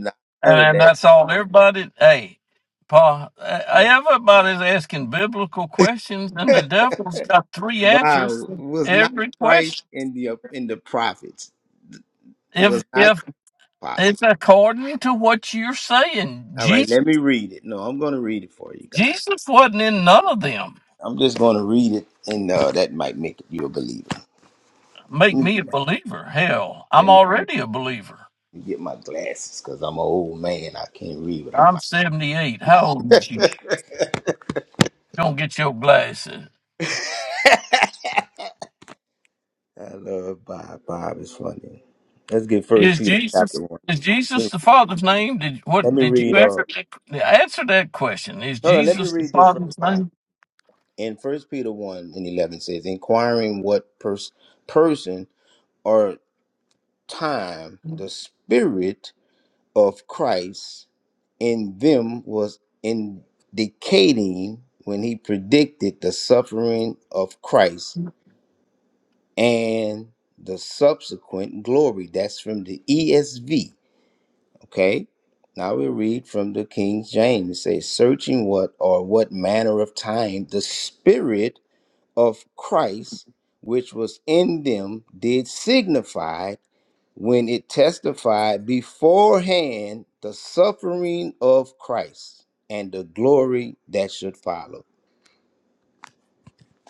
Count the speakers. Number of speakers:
2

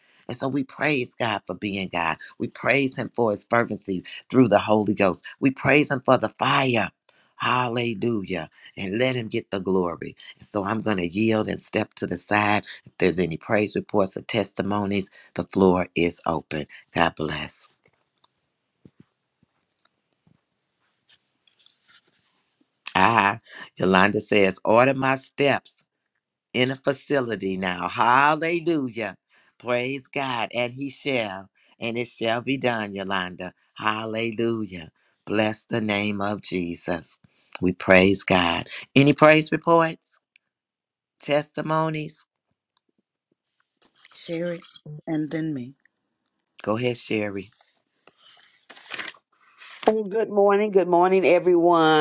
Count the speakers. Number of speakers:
3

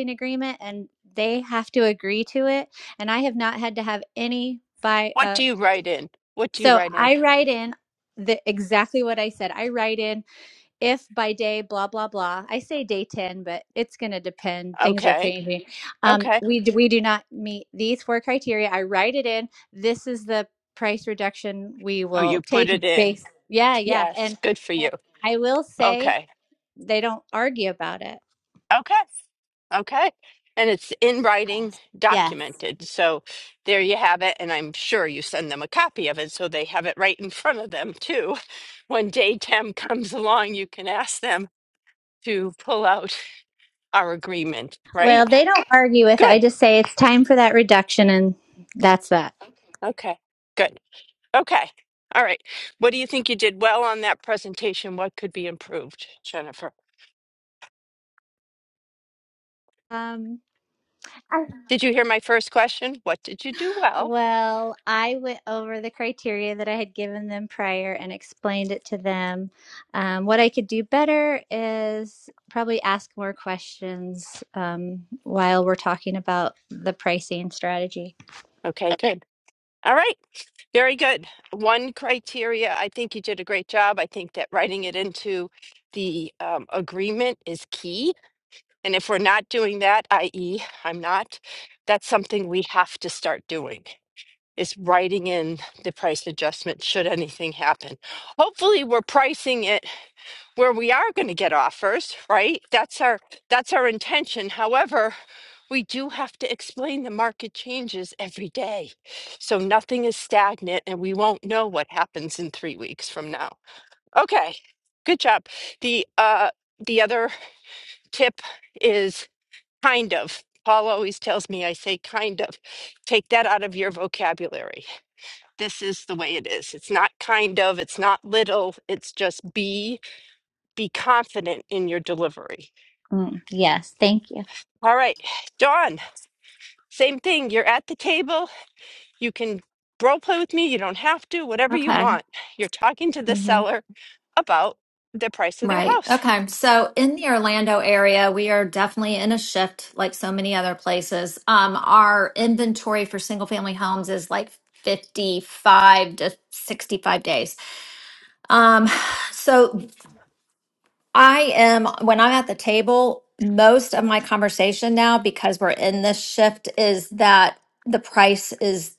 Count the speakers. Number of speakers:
3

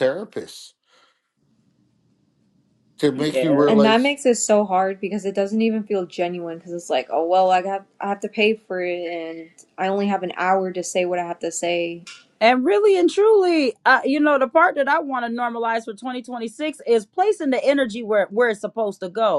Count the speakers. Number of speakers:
3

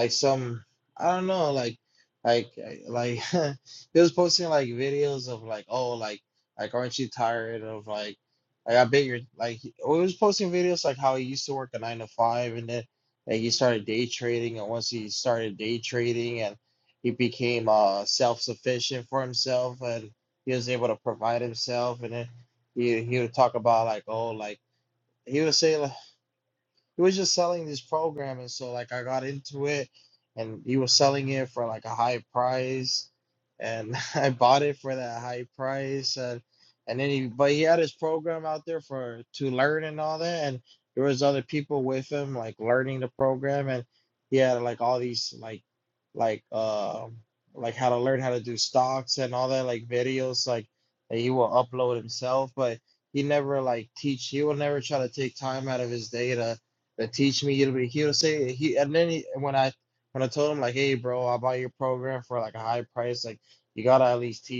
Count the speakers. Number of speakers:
1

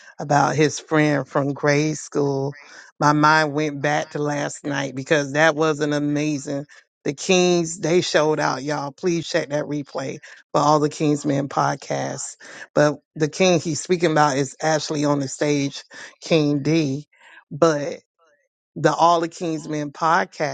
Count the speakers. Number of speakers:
1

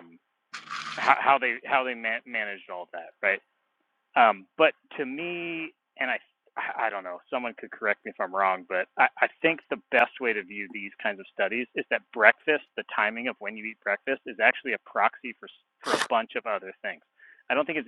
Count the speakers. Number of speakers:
1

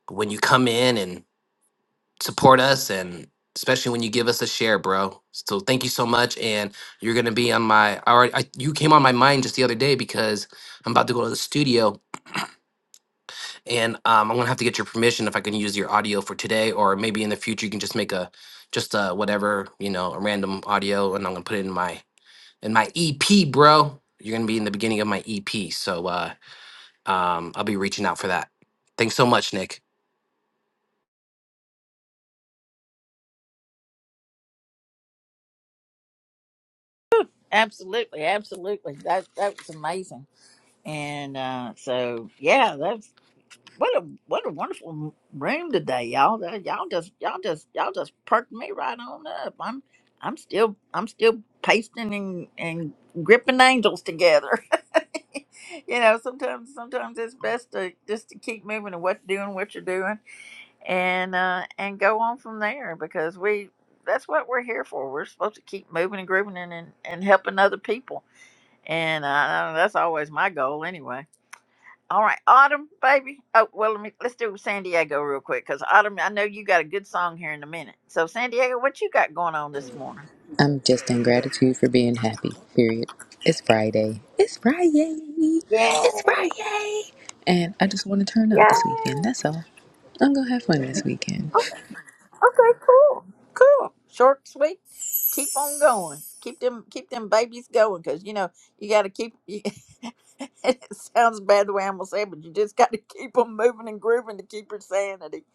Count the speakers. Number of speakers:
3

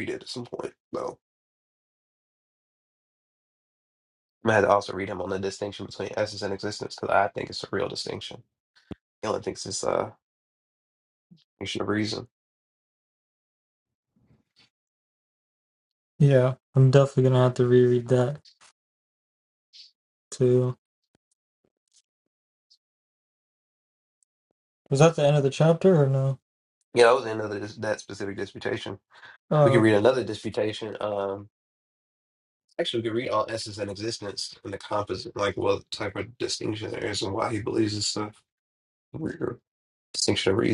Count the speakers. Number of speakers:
2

